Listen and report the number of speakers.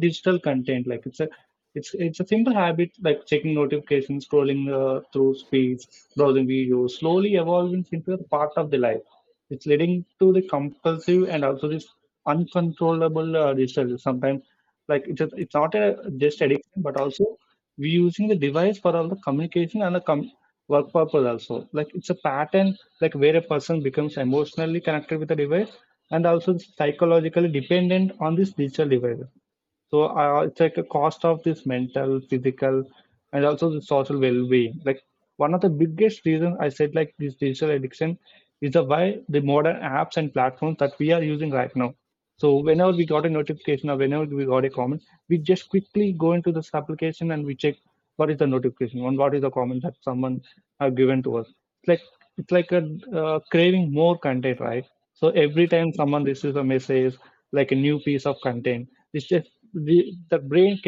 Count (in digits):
1